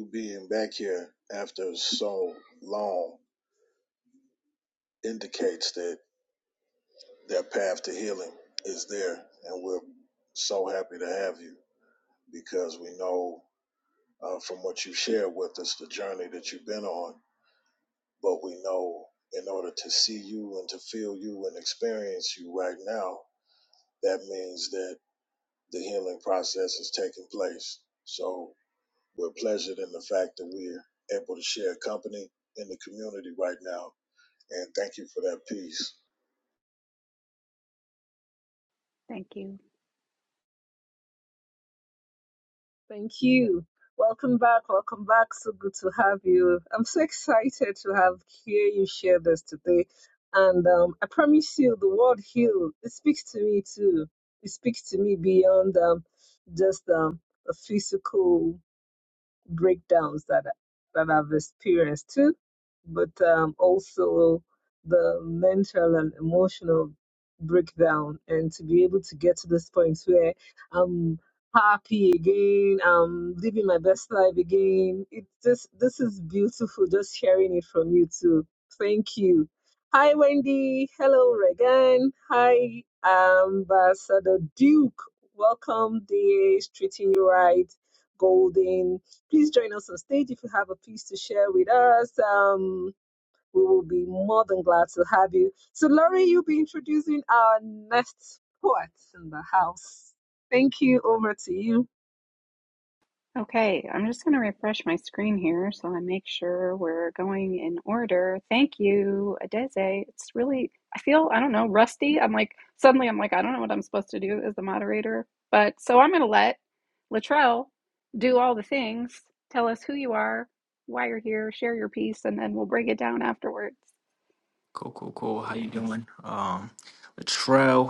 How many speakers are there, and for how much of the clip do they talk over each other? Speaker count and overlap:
four, no overlap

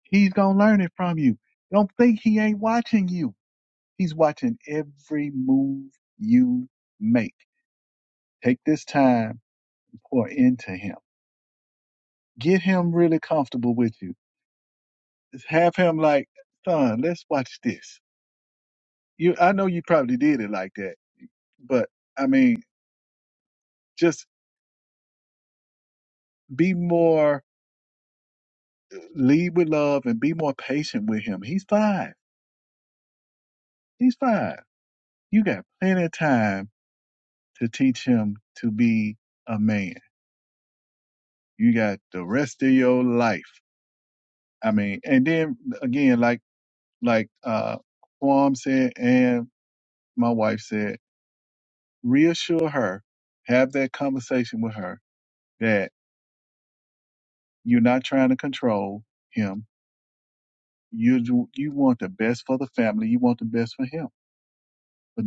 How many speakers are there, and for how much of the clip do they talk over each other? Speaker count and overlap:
one, no overlap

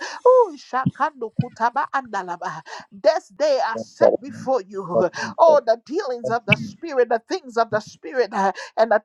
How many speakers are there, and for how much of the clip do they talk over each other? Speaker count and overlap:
one, no overlap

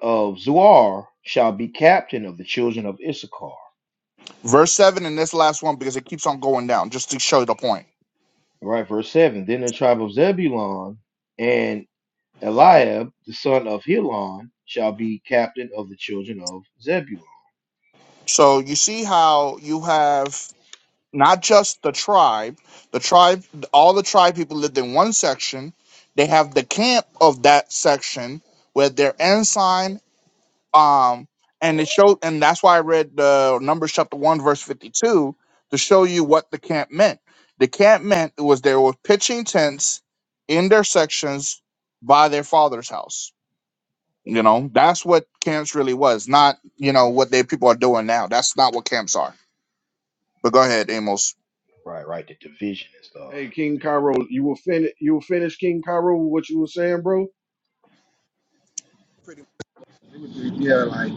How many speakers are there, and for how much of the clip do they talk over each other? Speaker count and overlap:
four, under 1%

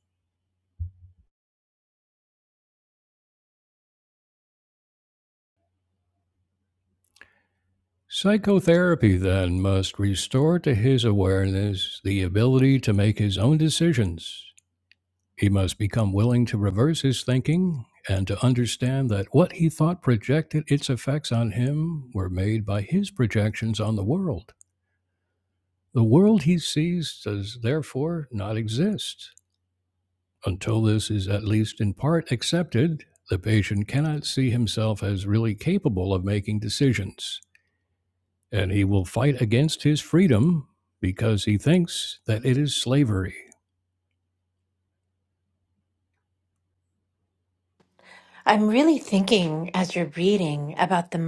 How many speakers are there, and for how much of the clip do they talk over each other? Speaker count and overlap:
two, no overlap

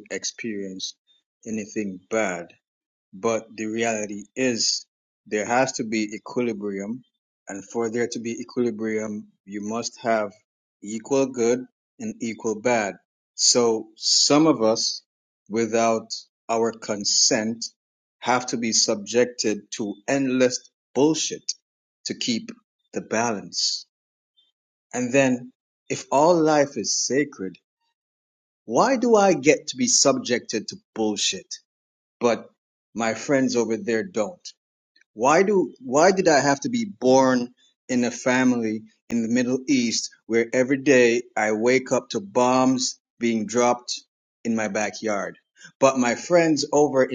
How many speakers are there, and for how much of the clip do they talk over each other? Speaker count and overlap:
one, no overlap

